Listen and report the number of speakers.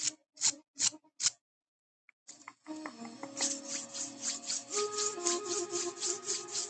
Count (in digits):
0